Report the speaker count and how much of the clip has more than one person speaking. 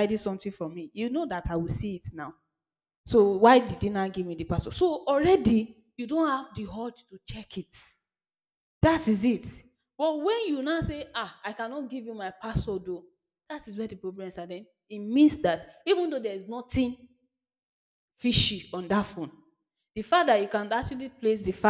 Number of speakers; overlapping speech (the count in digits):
1, no overlap